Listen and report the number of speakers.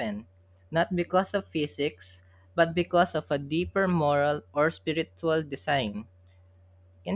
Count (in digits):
1